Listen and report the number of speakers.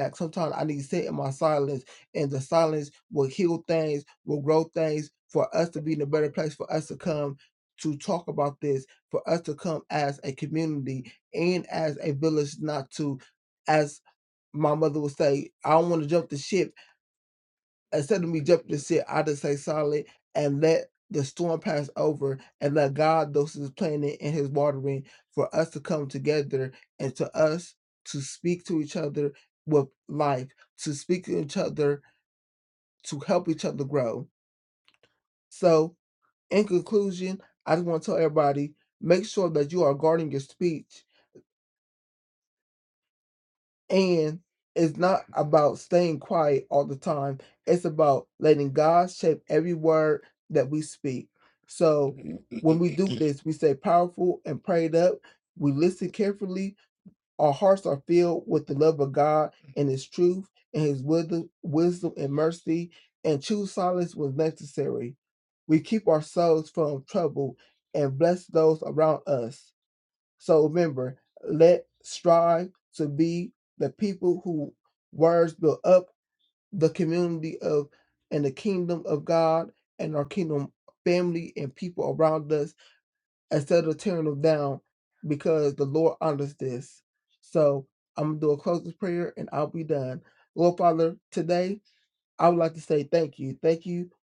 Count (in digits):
1